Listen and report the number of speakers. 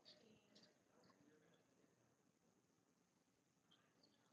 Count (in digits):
0